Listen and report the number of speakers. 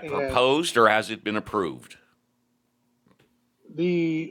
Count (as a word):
two